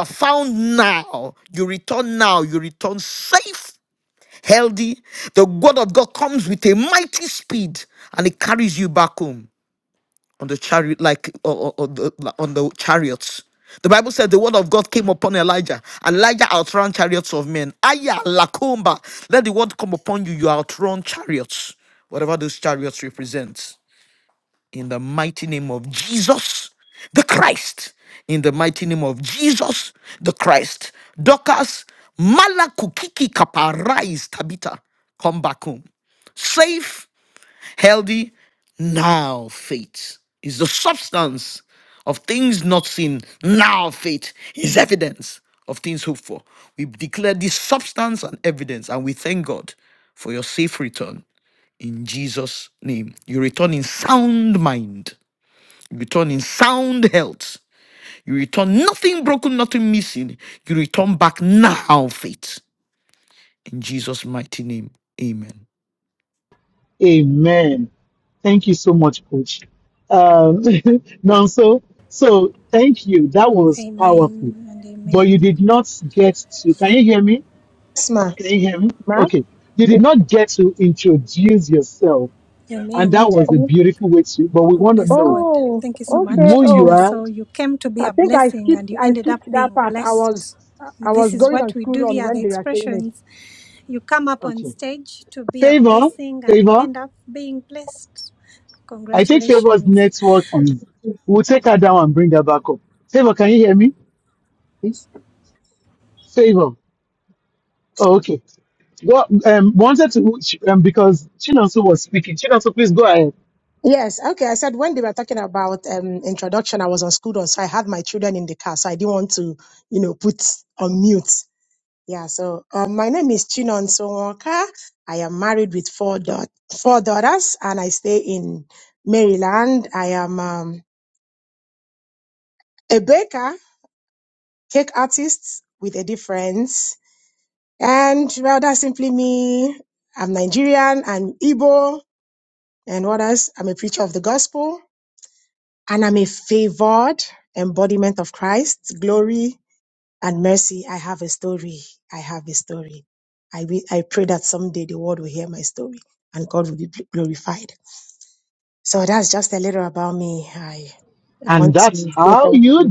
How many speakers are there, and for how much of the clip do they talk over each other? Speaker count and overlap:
four, about 7%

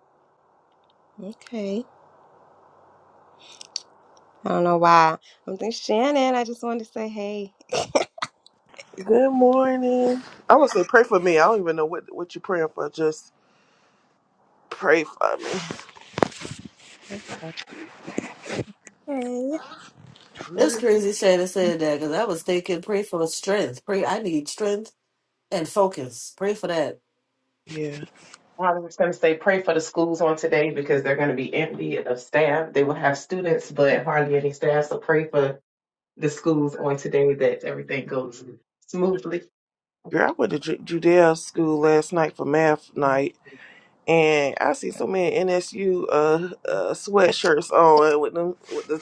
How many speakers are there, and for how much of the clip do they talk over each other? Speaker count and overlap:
four, no overlap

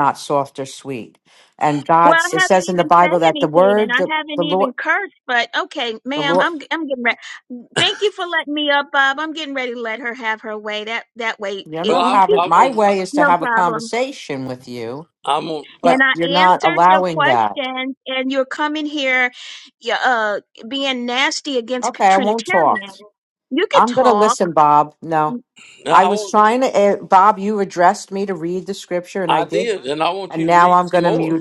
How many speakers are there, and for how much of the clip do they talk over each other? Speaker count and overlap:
three, about 32%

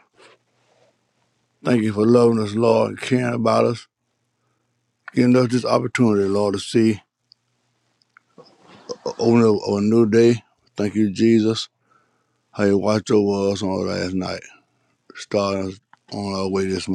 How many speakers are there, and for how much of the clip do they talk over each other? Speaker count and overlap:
one, no overlap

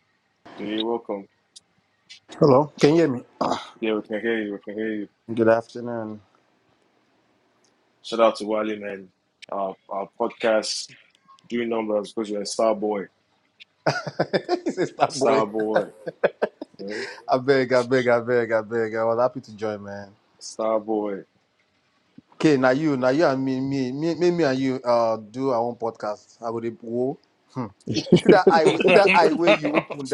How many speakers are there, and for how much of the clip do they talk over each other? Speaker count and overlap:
two, about 1%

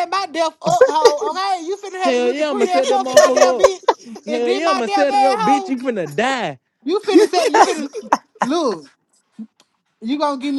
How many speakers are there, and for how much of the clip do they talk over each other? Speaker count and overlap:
two, about 29%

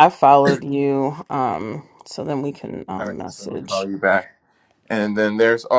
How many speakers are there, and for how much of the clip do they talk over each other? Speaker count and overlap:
two, about 15%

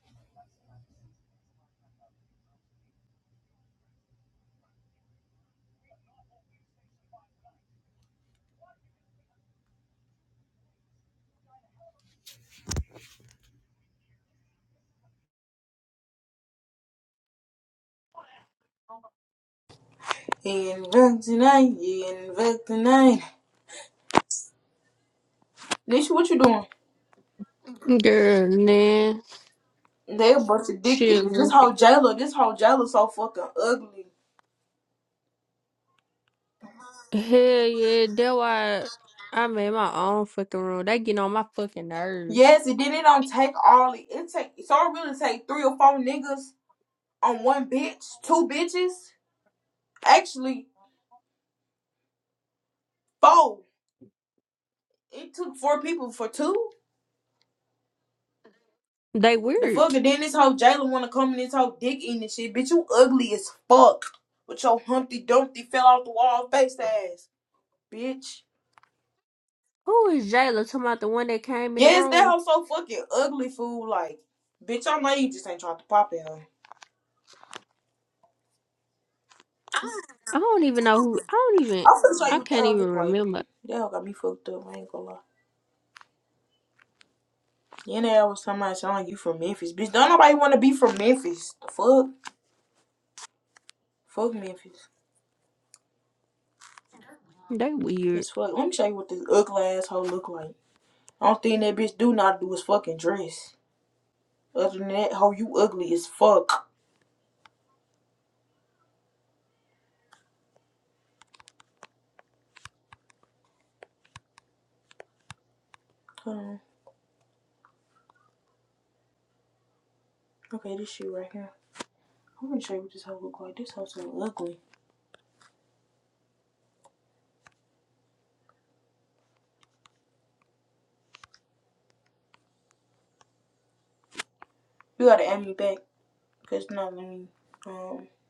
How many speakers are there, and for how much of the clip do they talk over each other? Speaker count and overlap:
two, about 2%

